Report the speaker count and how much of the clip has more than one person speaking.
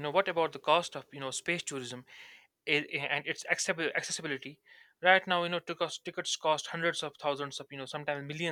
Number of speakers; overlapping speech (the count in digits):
1, no overlap